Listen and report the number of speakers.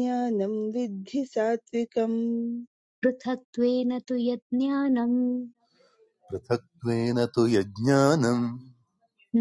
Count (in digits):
3